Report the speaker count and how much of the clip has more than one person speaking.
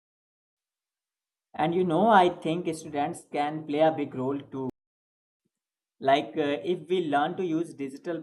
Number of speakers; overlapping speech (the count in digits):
1, no overlap